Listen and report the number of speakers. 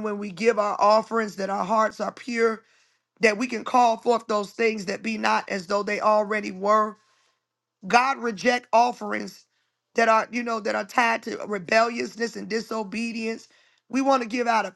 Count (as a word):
one